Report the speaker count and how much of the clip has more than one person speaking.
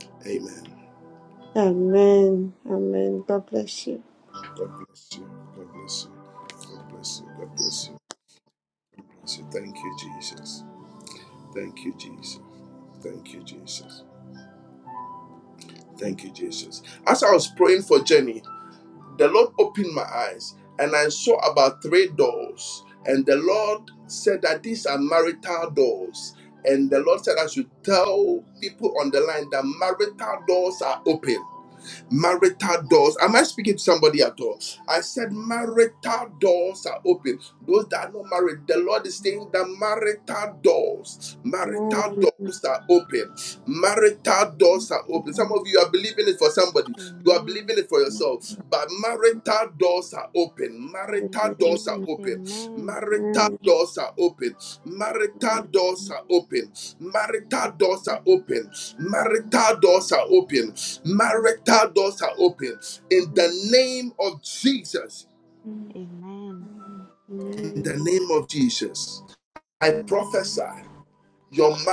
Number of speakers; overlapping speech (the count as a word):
three, about 5%